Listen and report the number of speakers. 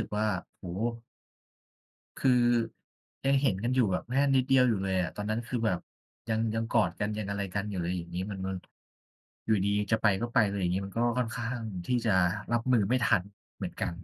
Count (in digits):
1